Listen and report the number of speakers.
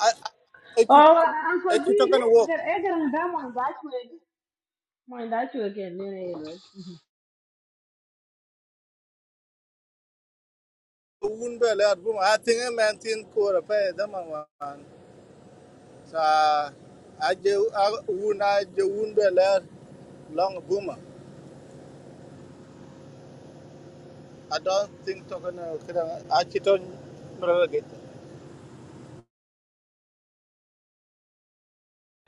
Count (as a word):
two